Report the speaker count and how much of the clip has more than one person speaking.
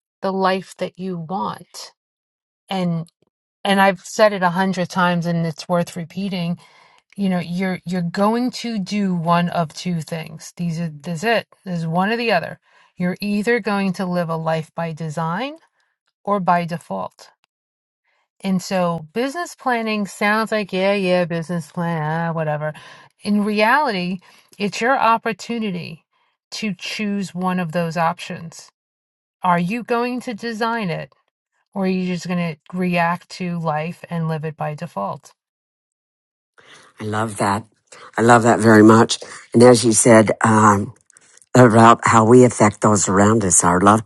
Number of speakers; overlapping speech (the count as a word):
two, no overlap